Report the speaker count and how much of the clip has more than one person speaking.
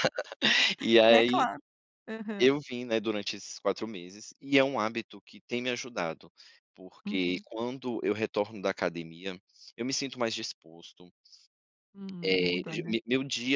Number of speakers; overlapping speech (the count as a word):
two, about 10%